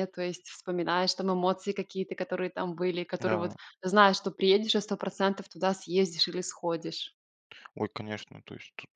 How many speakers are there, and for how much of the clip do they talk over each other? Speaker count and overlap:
2, about 4%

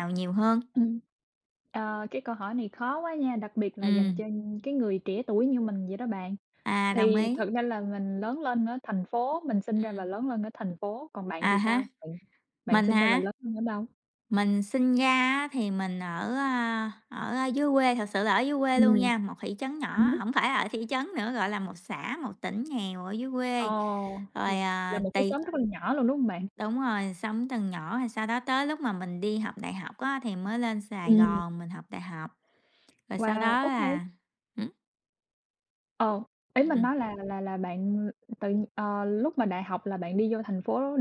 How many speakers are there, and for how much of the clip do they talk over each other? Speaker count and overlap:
2, about 13%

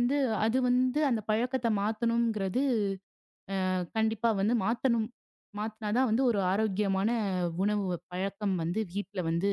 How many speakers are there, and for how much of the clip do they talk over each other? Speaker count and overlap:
1, no overlap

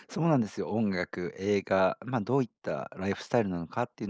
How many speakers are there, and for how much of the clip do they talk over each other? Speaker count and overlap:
1, no overlap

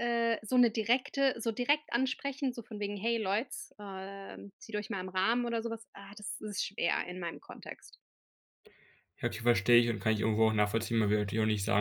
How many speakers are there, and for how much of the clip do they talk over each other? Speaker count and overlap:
2, no overlap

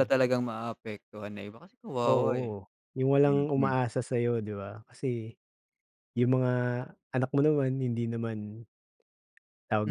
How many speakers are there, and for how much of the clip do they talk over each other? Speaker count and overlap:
2, about 10%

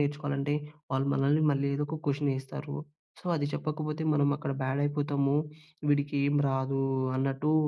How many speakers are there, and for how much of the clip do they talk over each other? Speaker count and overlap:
1, no overlap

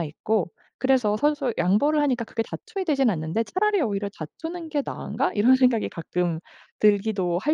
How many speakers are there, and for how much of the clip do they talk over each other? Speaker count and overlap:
1, no overlap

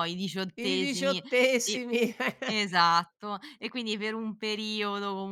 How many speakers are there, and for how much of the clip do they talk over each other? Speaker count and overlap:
2, about 14%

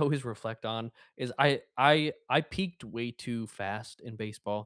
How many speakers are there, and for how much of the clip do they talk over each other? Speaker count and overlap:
1, no overlap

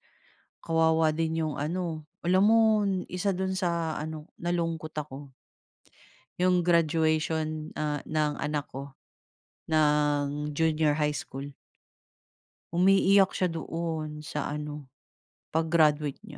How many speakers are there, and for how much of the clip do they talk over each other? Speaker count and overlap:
1, no overlap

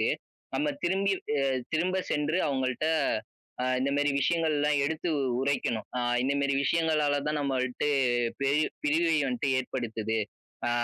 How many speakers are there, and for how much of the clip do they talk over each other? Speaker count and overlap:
1, no overlap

